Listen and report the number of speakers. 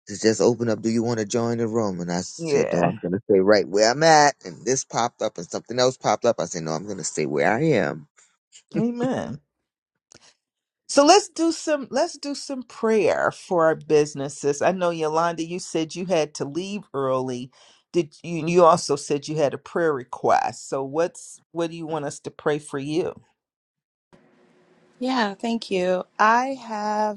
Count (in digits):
3